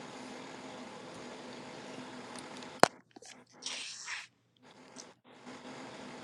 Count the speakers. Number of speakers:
0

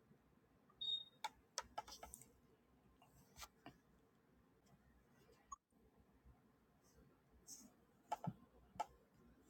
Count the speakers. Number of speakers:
0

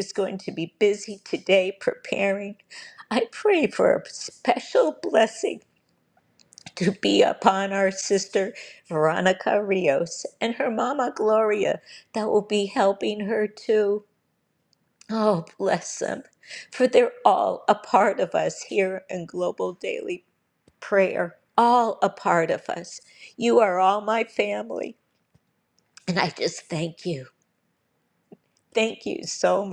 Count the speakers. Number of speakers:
1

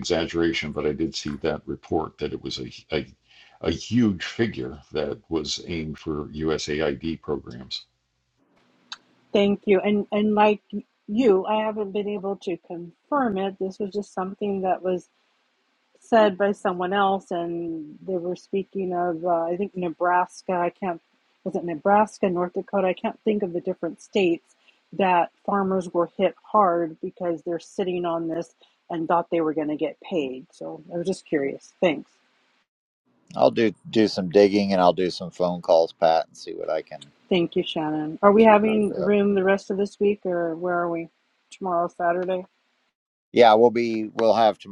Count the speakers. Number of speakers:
3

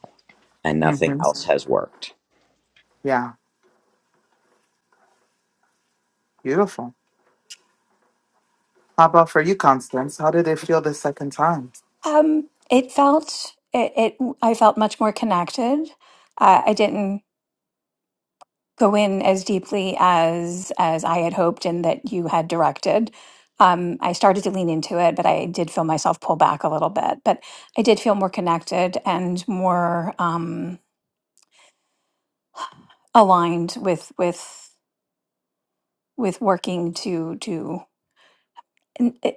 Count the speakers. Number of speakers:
3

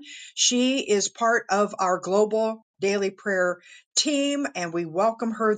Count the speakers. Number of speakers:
1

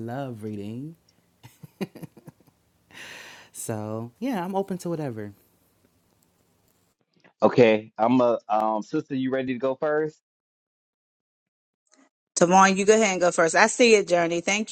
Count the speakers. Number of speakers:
3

